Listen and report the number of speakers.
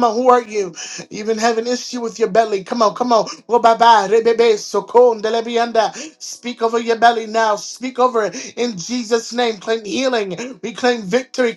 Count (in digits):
1